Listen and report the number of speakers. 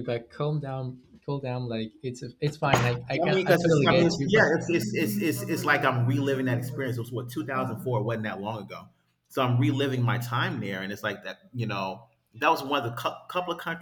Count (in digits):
2